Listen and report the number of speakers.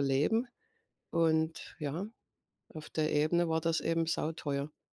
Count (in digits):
1